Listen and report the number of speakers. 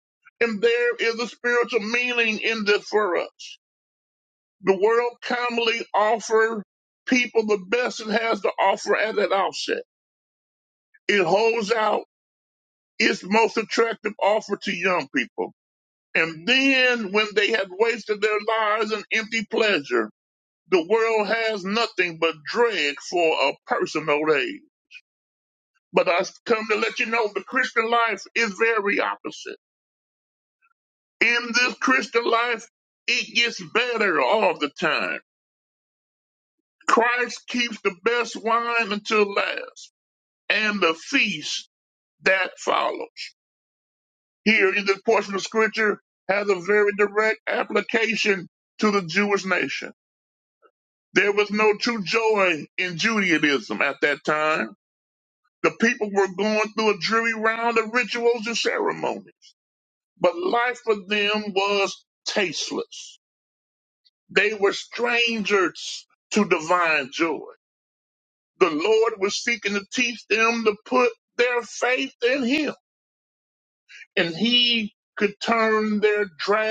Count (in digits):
1